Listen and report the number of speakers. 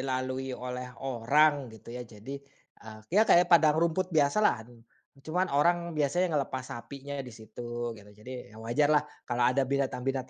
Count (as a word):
one